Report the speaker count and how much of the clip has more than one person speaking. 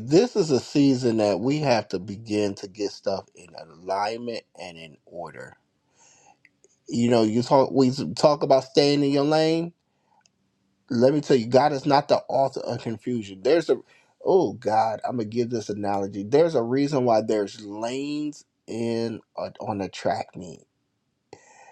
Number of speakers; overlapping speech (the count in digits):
1, no overlap